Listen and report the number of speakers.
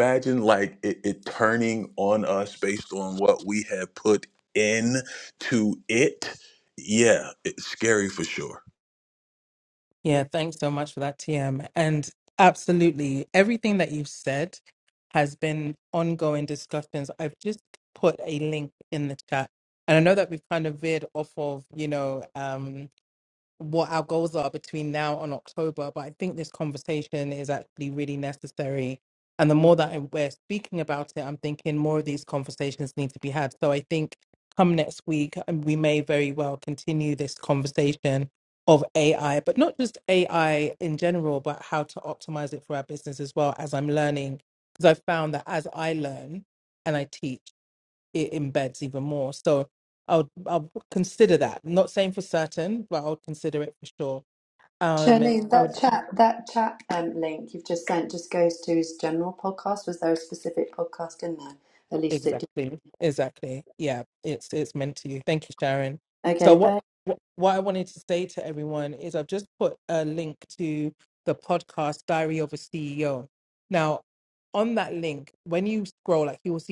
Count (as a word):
three